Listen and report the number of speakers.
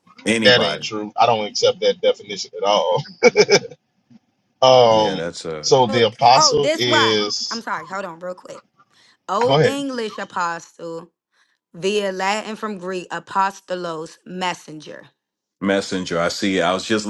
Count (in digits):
3